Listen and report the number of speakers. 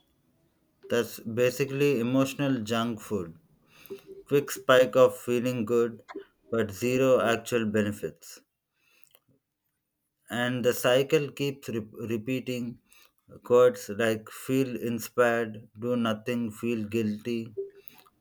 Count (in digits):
1